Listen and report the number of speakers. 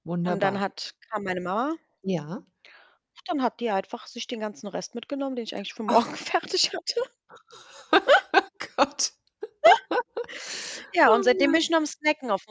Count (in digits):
2